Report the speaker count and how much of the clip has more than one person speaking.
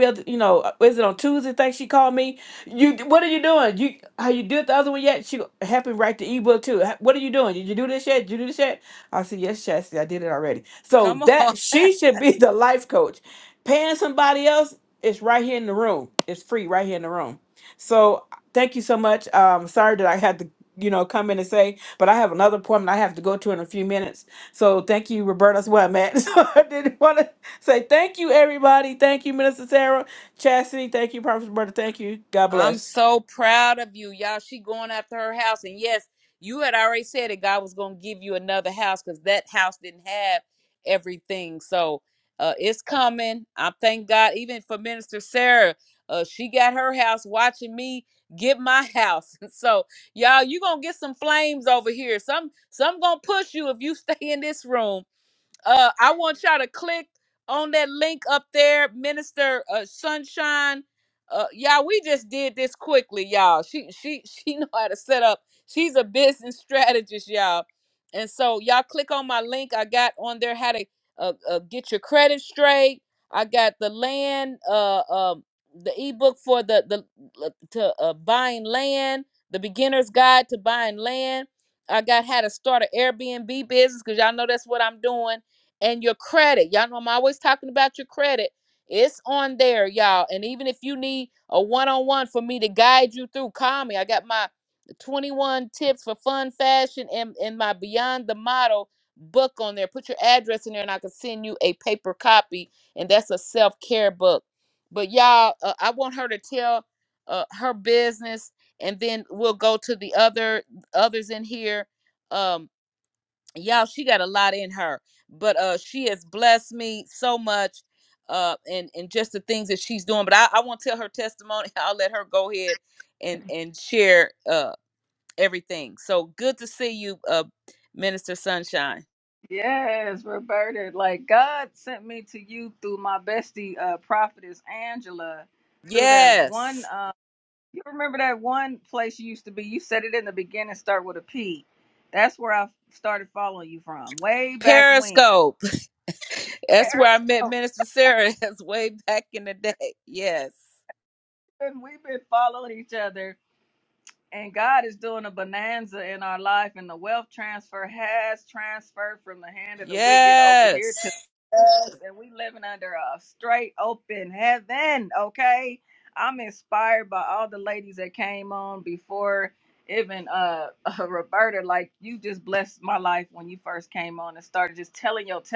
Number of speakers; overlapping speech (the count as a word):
three, about 2%